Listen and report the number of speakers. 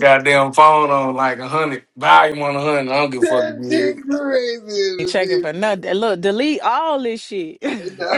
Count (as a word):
three